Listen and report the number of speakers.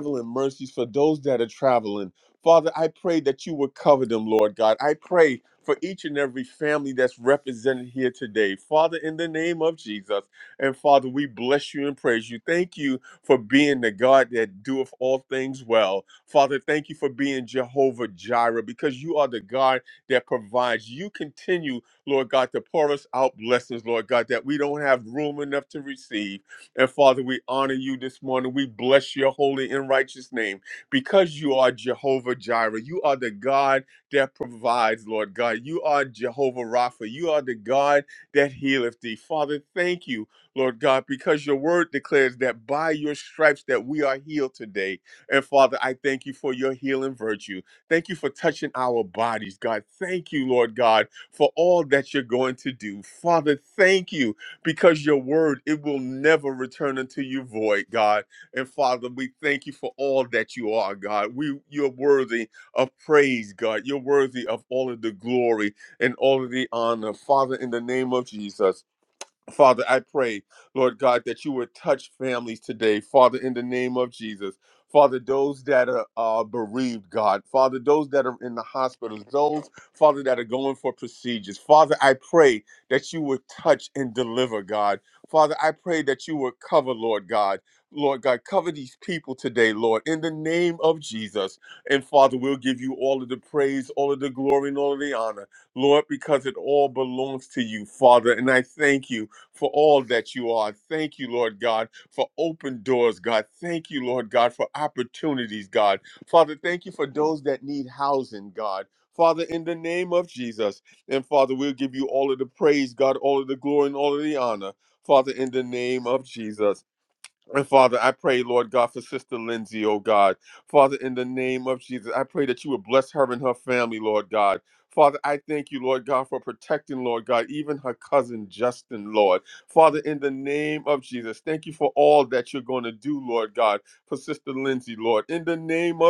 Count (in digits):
1